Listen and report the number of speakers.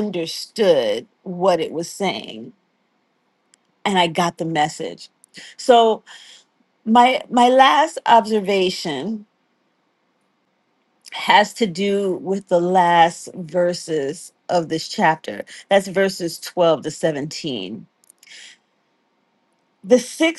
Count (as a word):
one